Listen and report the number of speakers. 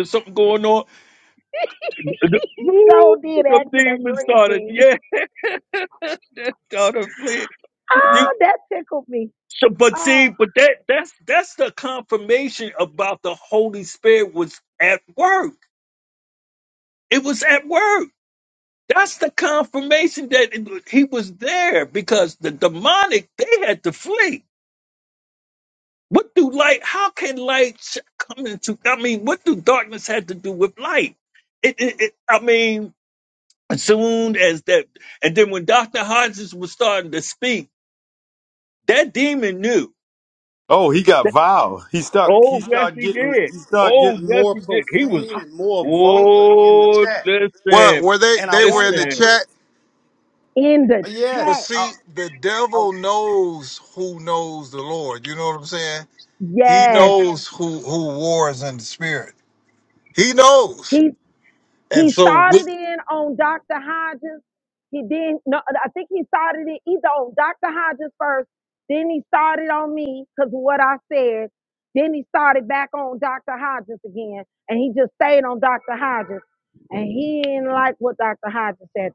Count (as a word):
four